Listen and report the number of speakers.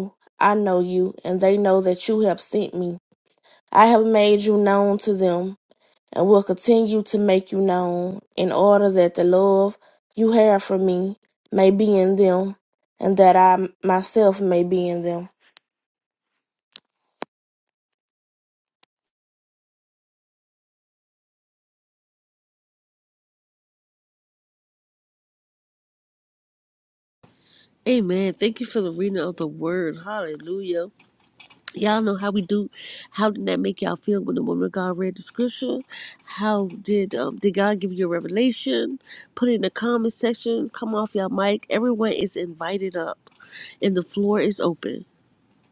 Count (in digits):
2